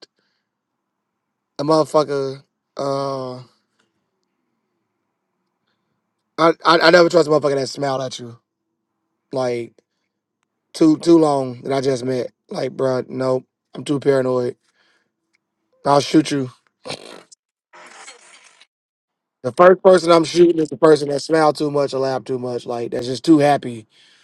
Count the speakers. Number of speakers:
one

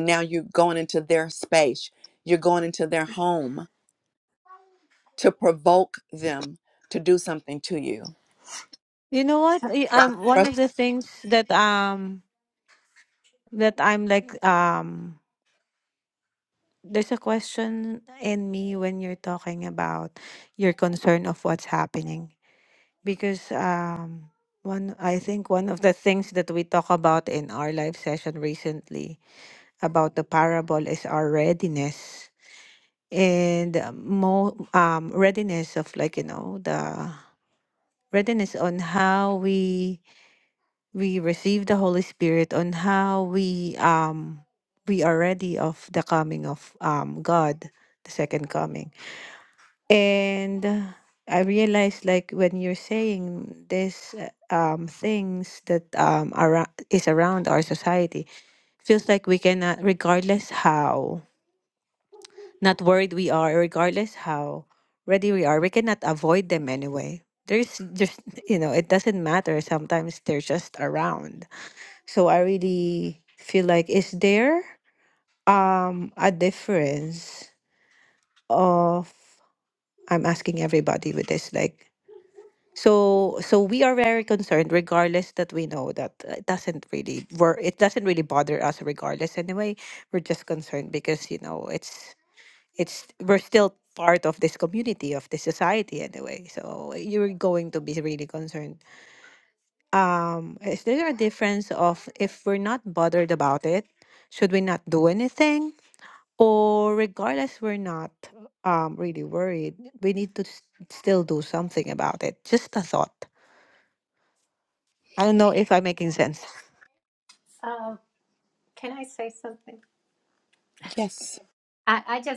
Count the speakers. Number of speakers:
three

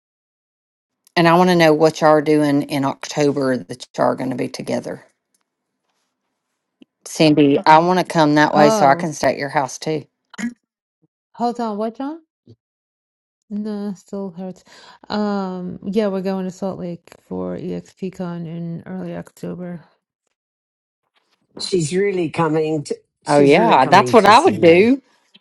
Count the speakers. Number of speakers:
three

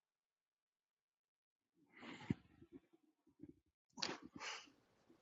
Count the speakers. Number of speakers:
zero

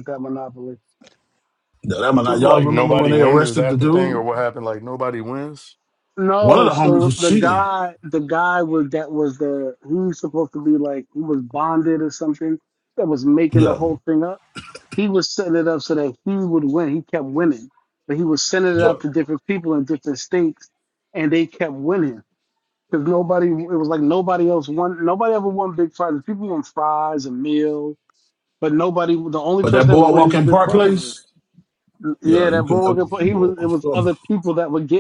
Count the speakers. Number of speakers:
three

